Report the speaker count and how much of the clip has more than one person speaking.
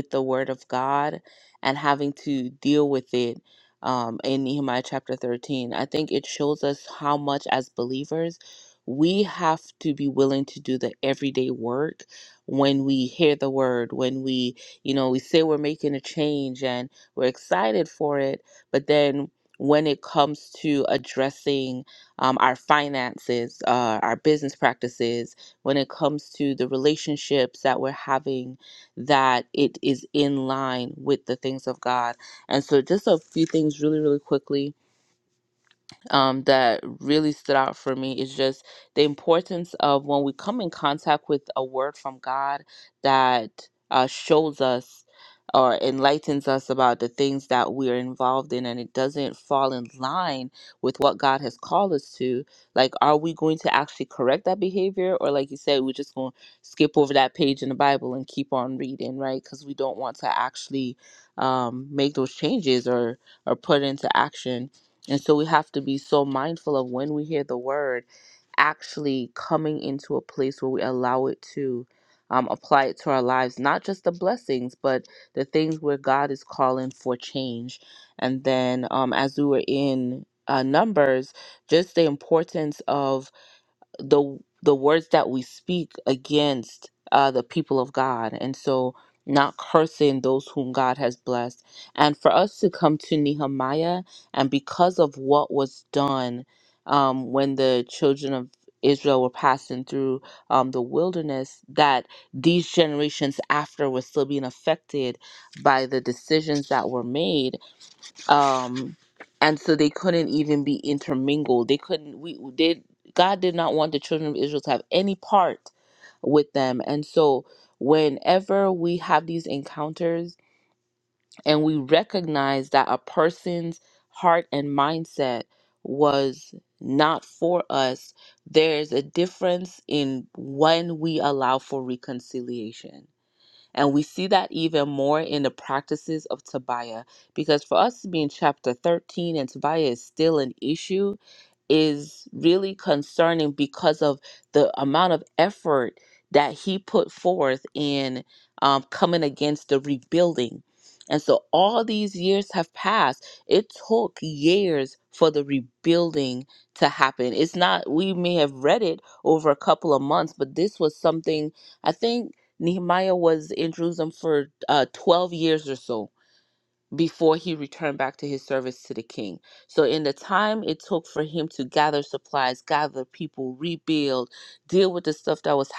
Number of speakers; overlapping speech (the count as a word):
one, no overlap